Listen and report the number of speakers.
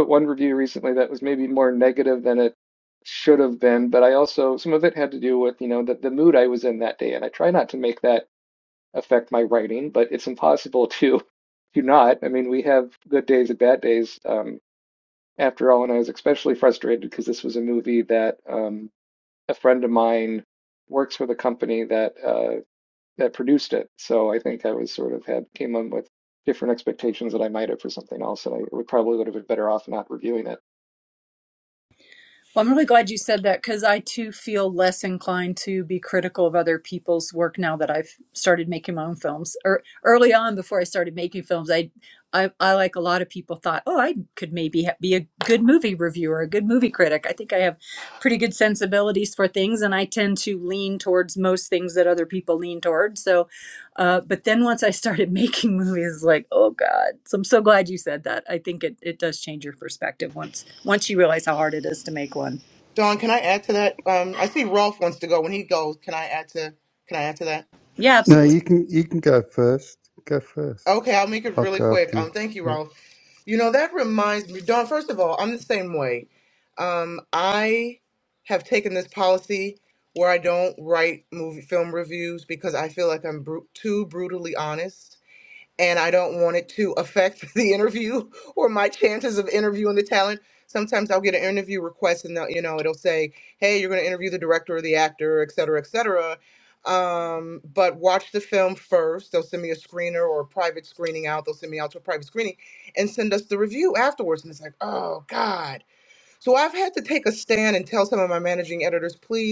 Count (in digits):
4